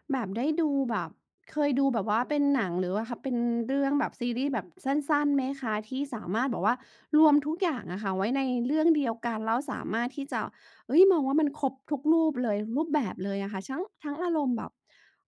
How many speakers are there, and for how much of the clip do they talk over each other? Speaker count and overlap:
1, no overlap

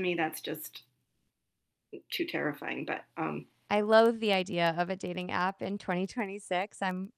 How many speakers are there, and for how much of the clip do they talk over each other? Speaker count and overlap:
2, no overlap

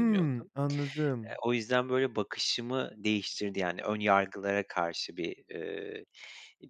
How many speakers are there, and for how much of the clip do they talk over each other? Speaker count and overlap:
2, about 7%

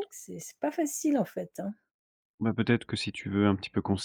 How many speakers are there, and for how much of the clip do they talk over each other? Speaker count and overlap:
2, about 1%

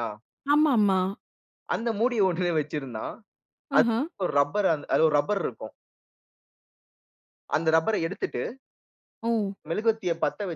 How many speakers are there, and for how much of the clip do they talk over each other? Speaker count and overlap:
2, about 1%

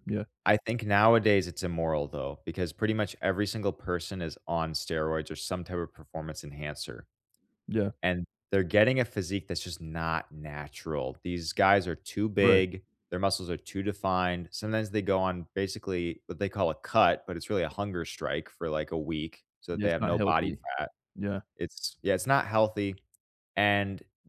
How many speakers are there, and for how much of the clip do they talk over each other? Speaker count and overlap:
2, about 4%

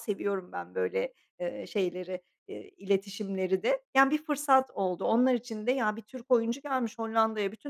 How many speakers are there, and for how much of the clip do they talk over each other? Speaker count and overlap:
1, no overlap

